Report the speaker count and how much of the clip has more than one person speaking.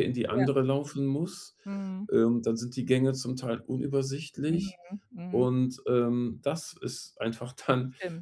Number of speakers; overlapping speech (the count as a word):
two, about 7%